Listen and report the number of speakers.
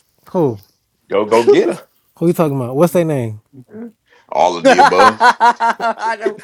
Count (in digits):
3